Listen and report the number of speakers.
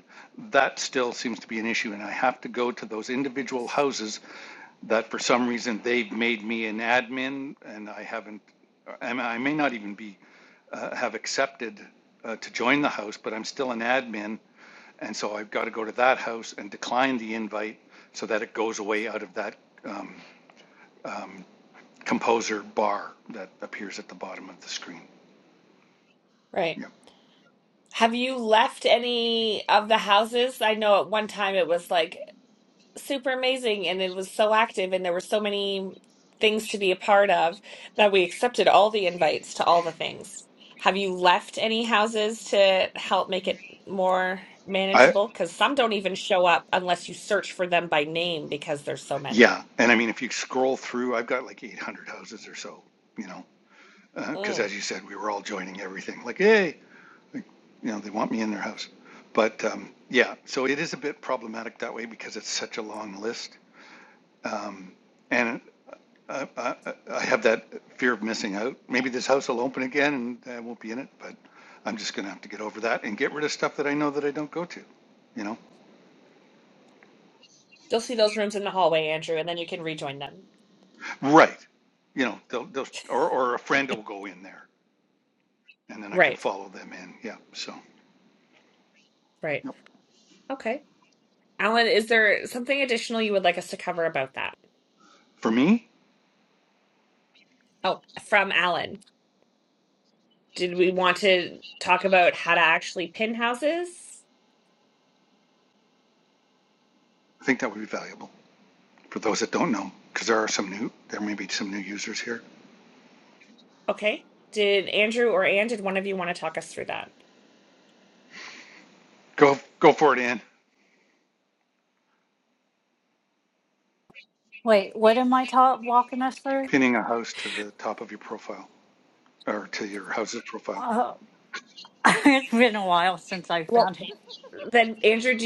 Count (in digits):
3